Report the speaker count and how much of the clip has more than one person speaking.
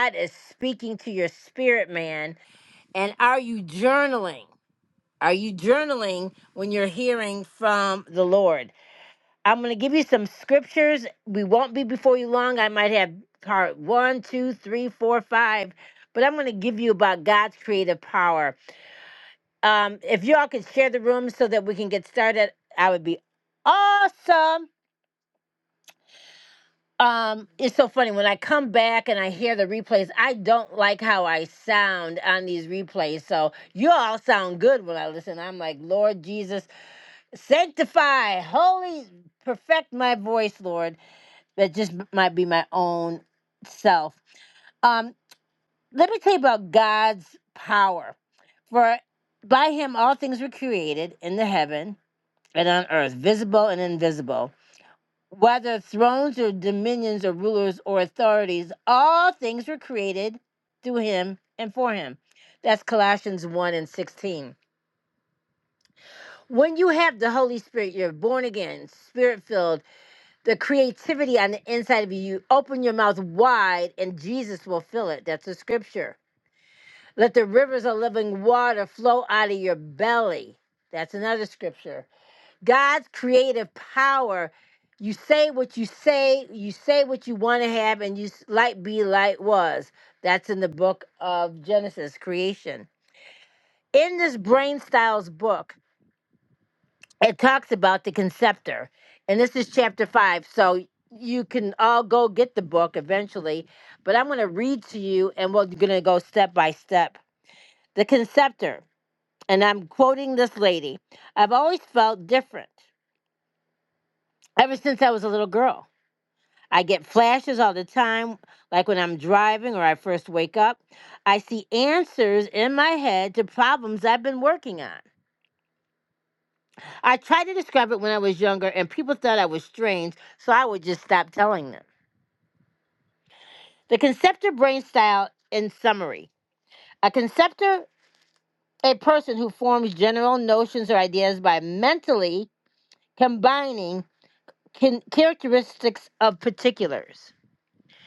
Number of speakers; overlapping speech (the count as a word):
one, no overlap